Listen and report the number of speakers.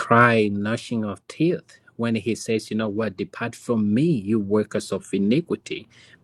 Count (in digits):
1